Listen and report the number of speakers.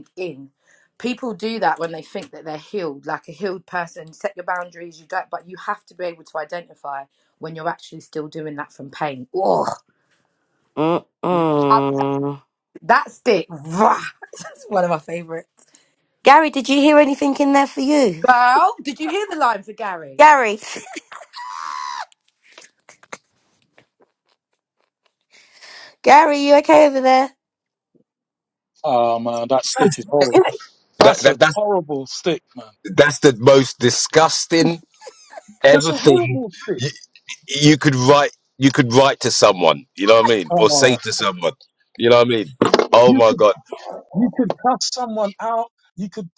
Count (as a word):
four